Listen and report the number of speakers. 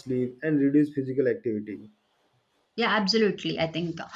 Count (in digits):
2